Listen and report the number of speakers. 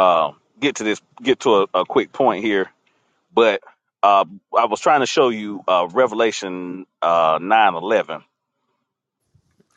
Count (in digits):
1